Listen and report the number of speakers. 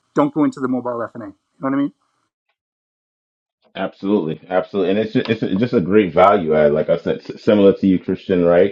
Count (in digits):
2